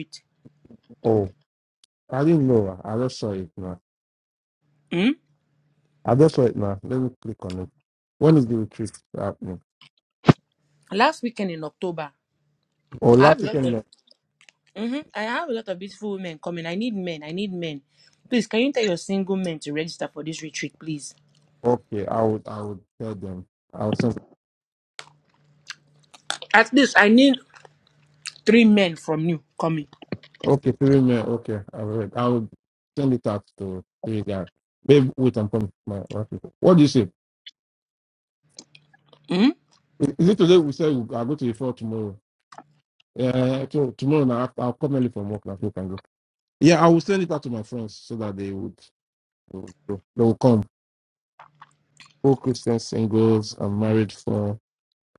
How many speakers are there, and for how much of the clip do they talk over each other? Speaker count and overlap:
two, about 1%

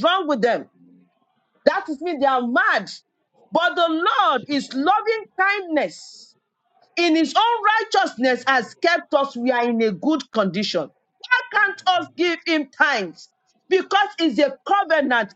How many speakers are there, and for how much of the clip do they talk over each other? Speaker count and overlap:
one, no overlap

